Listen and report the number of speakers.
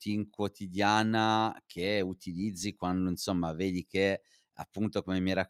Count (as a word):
one